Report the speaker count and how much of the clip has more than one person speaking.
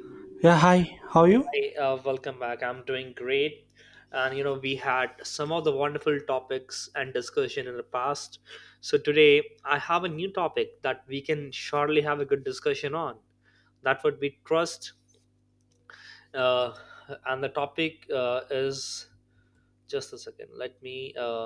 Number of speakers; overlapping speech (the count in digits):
2, no overlap